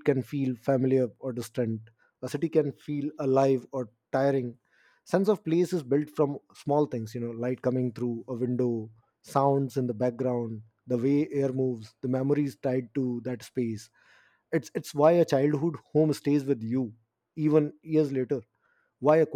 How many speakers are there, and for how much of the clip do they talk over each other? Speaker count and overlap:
one, no overlap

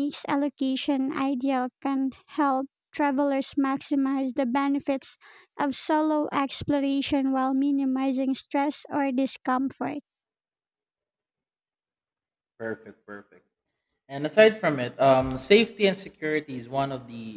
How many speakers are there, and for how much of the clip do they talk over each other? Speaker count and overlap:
two, no overlap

